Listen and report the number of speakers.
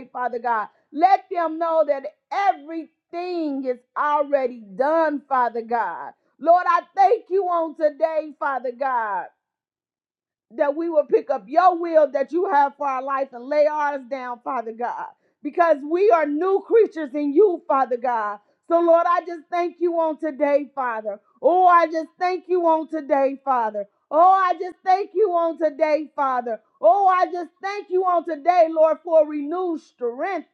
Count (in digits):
1